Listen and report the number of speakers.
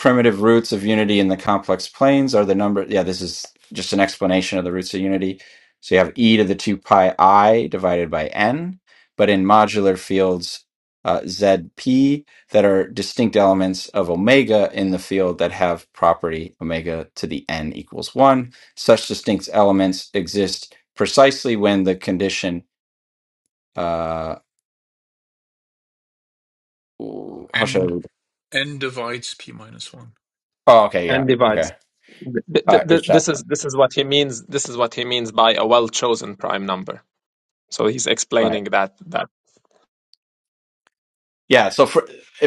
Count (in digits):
3